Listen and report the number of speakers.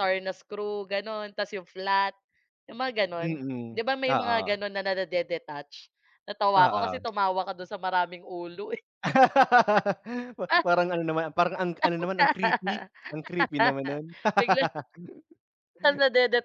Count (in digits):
2